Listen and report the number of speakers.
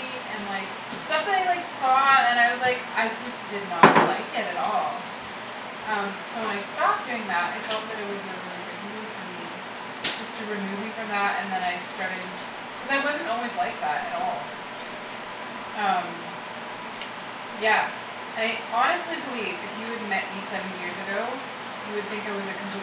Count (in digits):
1